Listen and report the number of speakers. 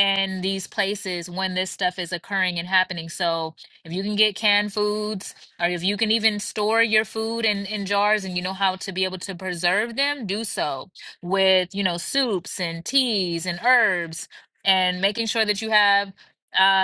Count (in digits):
1